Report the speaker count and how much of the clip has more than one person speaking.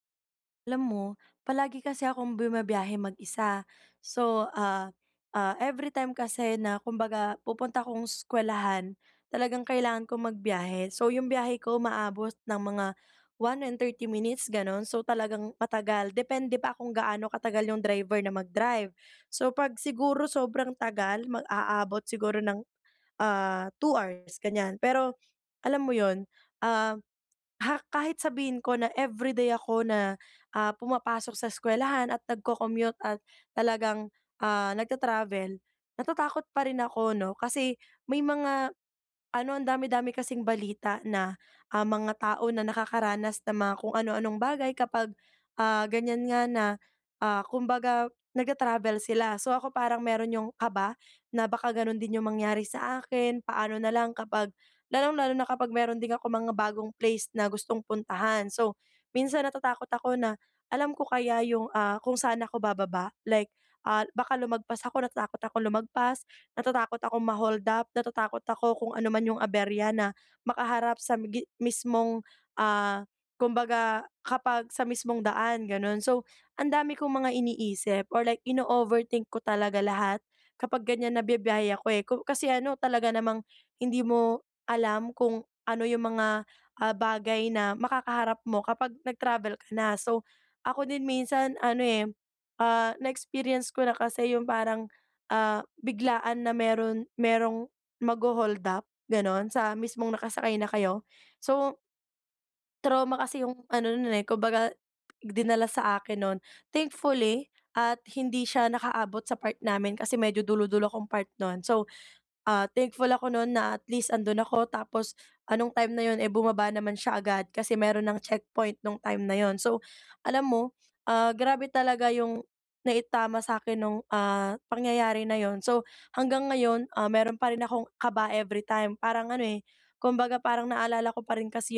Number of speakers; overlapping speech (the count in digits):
1, no overlap